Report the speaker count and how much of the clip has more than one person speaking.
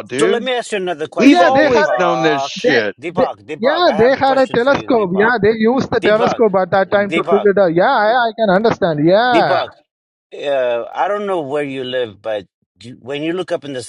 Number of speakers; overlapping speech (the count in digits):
3, about 35%